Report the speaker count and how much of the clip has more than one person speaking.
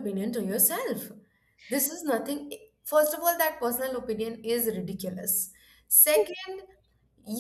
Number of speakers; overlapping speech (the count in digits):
1, no overlap